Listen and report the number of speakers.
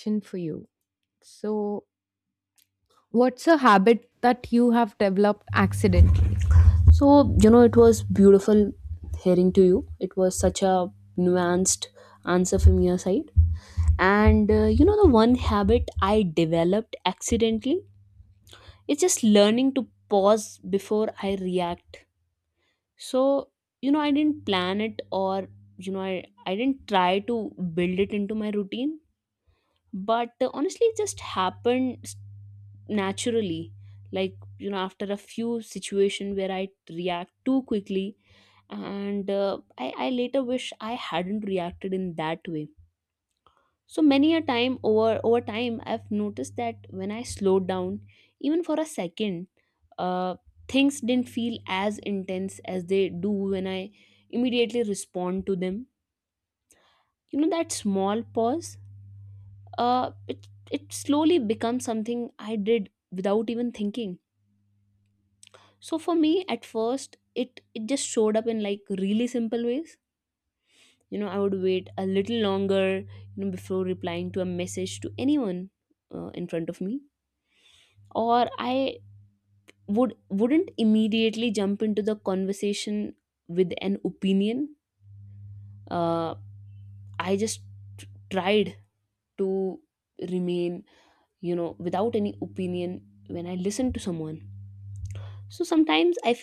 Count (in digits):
2